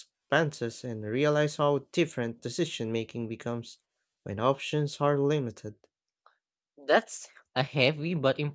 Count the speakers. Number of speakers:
2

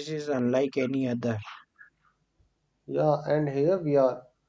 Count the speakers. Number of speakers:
2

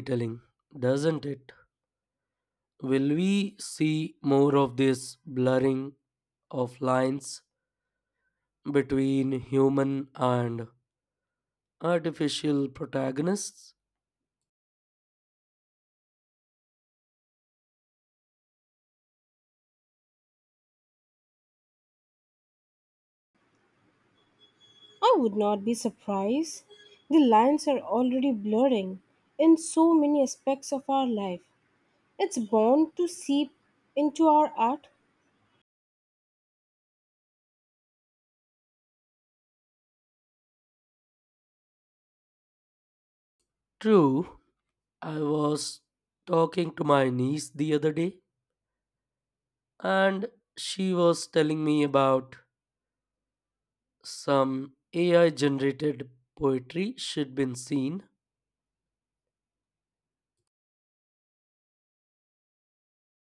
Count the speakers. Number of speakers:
2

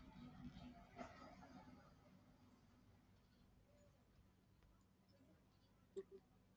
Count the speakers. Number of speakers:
0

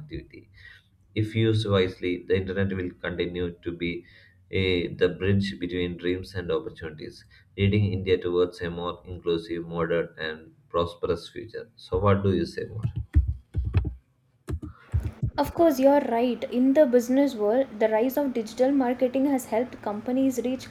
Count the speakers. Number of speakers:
2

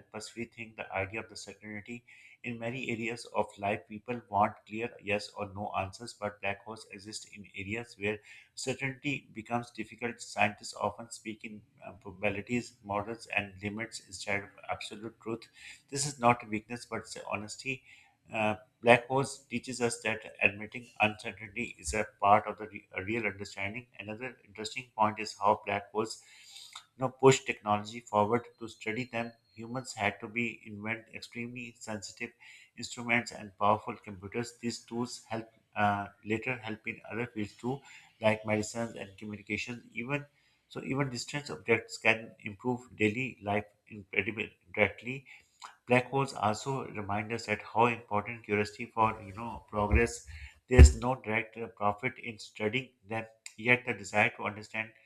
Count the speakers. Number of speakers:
1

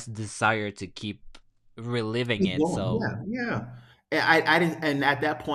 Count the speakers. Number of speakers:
2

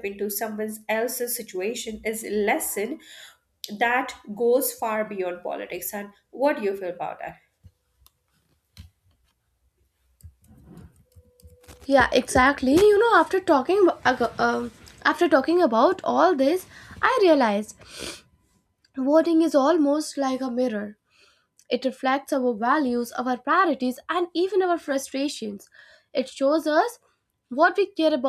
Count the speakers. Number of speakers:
2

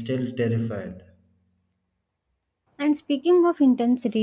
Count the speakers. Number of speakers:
2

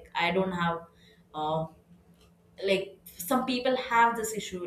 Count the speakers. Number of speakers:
1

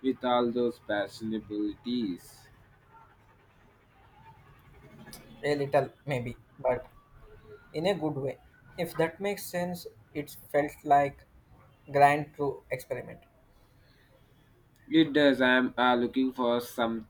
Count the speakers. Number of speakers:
2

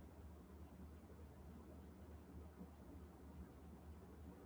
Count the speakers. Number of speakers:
0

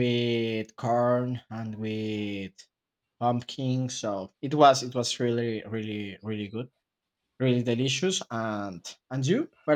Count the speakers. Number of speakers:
1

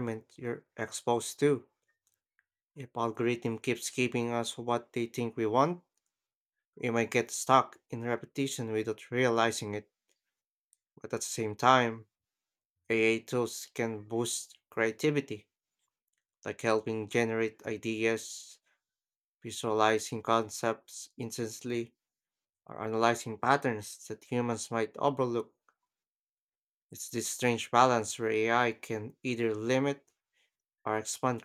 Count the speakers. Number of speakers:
1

